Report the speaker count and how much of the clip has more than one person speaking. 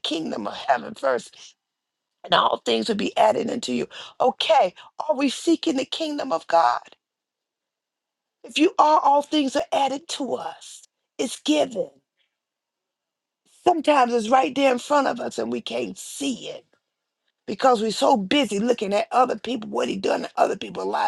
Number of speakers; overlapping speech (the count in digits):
1, no overlap